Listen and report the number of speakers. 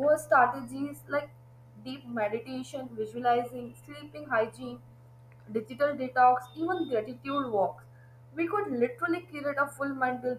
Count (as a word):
one